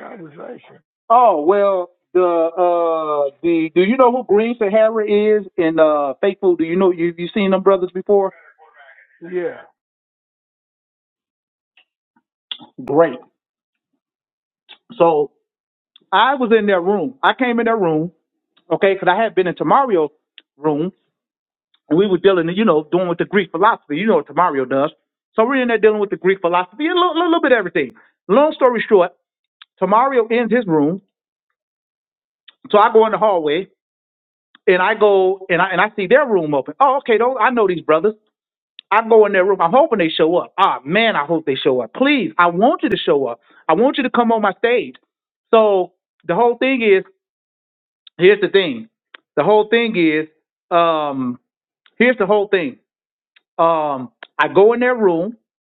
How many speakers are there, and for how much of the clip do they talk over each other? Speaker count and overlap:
two, no overlap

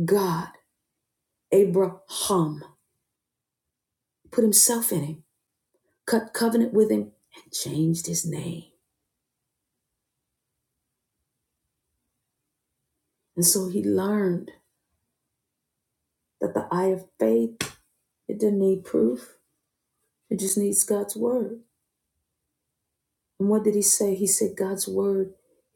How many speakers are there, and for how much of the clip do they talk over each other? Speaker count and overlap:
one, no overlap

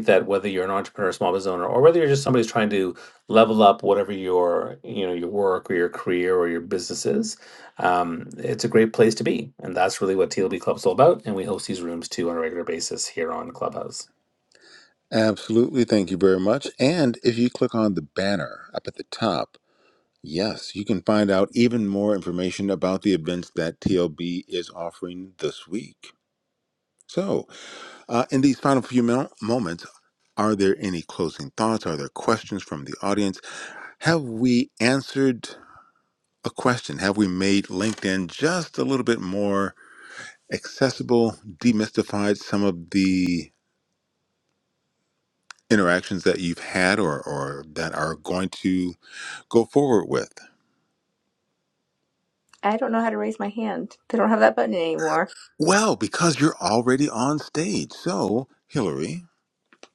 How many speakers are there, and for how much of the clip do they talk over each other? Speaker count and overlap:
three, no overlap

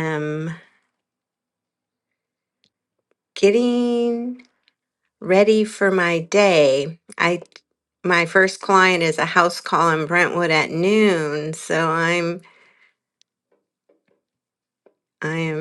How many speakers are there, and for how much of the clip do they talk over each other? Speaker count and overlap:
one, no overlap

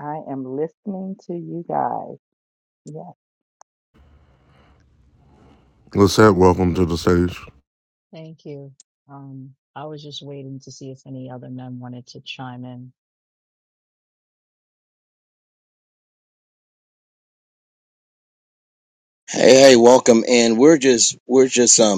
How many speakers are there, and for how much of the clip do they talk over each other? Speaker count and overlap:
four, no overlap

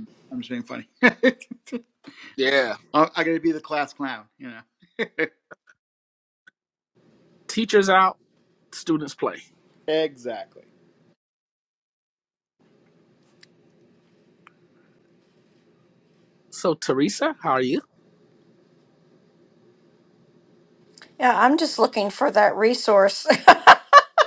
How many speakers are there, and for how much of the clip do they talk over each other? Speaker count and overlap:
three, no overlap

